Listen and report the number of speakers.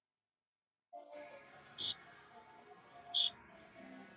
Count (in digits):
0